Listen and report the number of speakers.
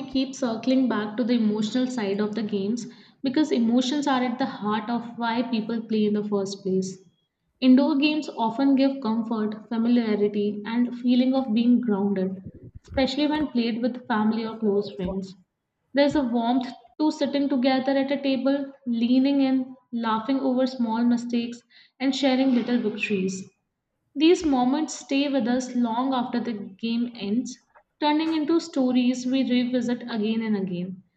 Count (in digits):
1